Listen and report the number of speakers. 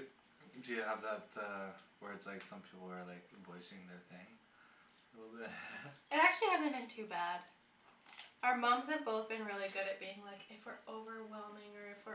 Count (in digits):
2